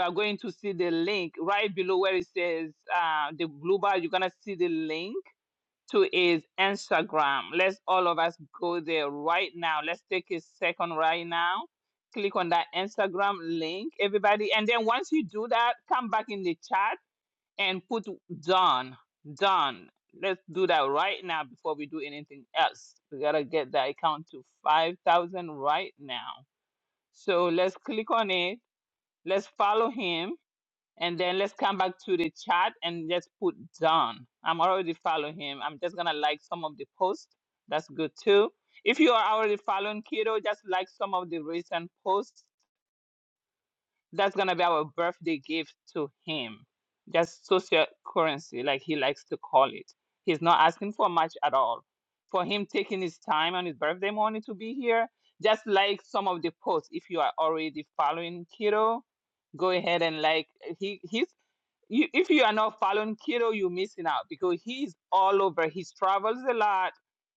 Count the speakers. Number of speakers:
1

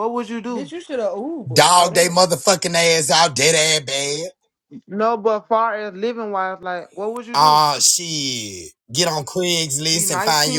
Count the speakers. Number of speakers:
3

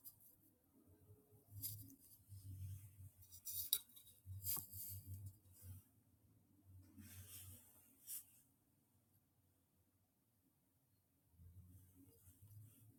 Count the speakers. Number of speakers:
0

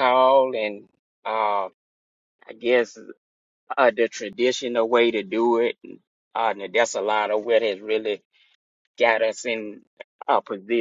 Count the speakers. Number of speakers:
1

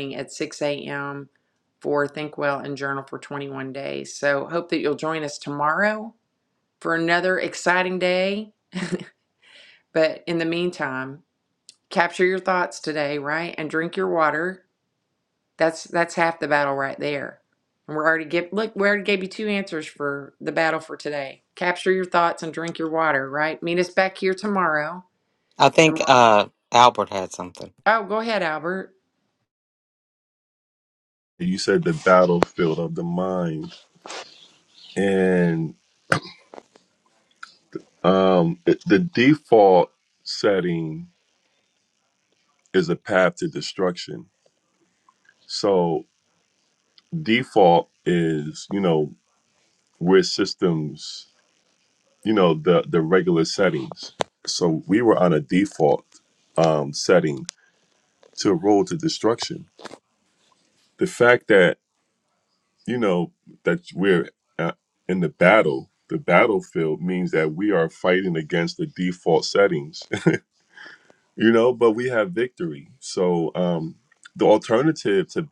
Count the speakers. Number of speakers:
3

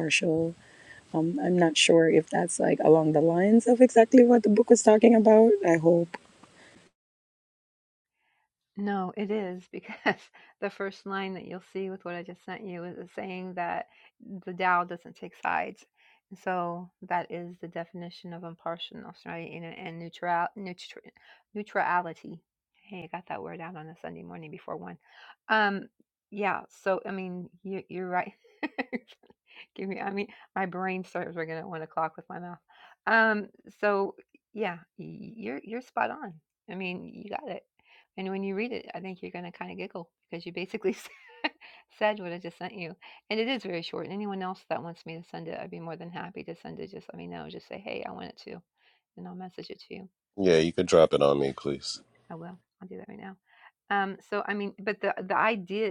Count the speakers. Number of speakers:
3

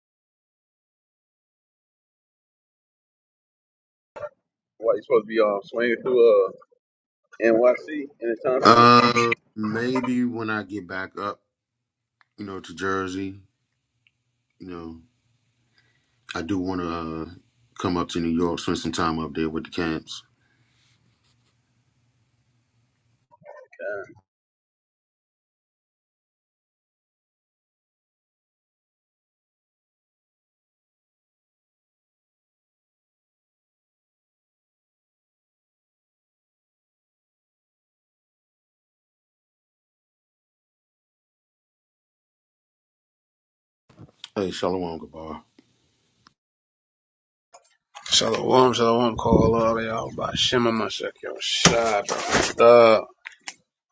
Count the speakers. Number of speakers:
3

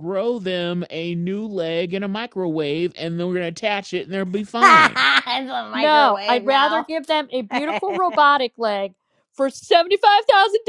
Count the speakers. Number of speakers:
3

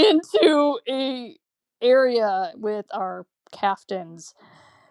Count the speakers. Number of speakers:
1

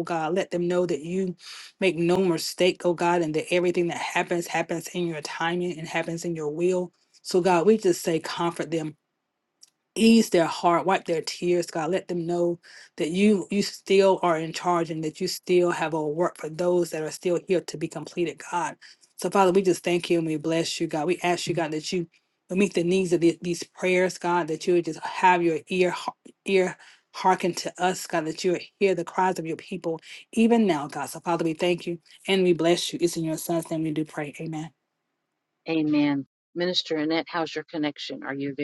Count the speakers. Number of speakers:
2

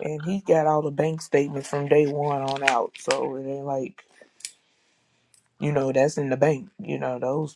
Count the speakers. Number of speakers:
1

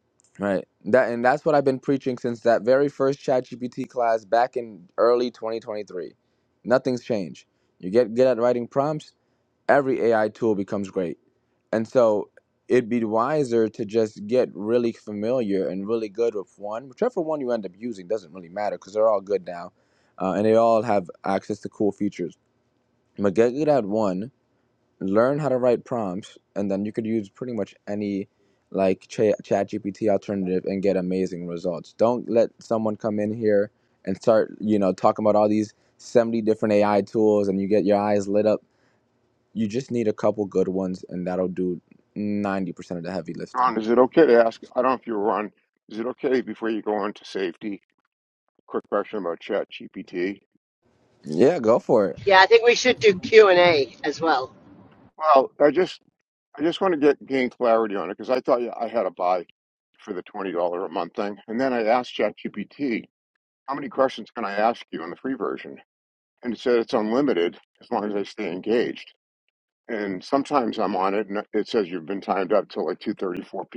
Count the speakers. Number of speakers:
3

